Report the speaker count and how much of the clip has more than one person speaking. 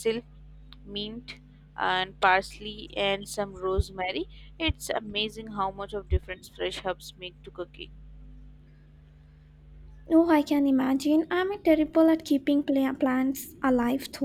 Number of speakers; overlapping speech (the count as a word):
two, no overlap